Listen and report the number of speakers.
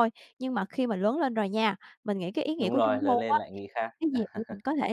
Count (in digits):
2